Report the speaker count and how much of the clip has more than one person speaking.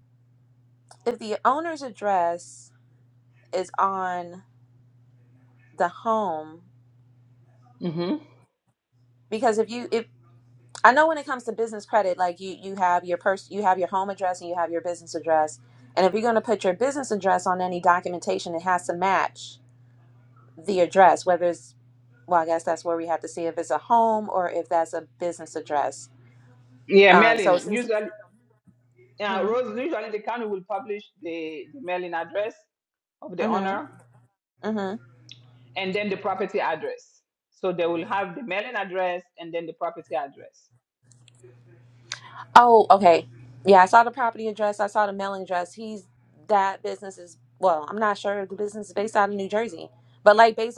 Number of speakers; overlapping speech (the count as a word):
two, about 3%